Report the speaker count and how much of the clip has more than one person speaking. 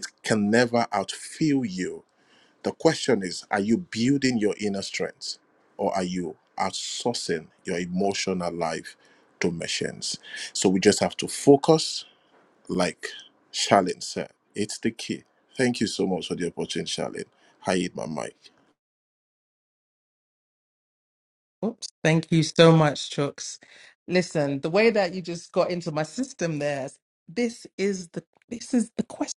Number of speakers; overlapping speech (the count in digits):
2, no overlap